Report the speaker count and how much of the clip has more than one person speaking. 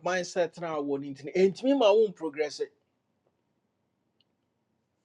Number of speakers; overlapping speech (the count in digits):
1, no overlap